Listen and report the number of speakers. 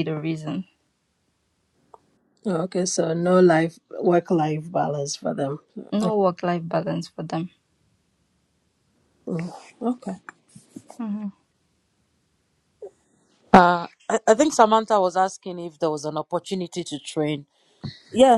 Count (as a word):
three